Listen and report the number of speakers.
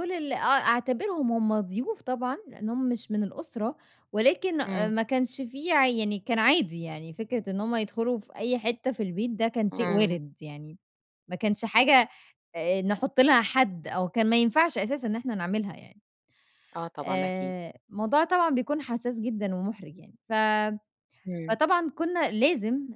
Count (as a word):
two